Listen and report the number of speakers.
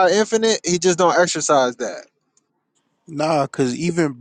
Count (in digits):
2